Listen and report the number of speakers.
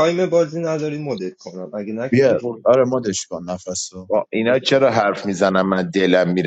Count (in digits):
3